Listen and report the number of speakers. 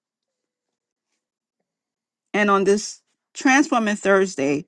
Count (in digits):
1